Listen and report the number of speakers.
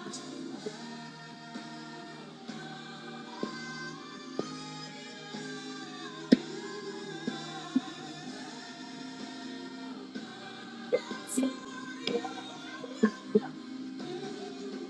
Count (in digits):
0